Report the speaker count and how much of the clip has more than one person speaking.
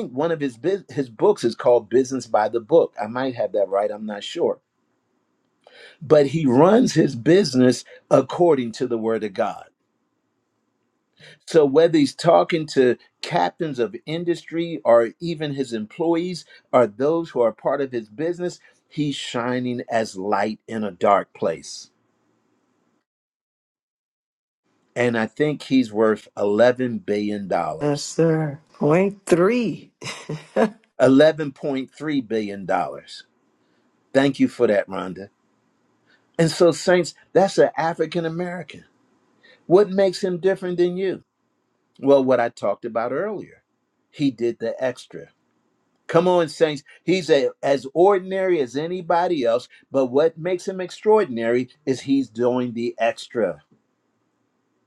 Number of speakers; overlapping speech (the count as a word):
two, under 1%